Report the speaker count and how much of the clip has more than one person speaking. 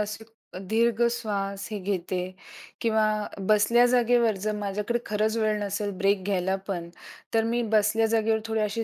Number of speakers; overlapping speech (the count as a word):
one, no overlap